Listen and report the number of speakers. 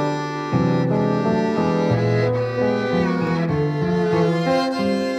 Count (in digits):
0